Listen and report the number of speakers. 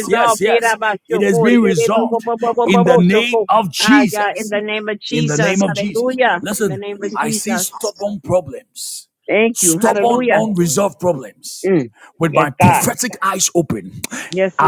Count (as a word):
two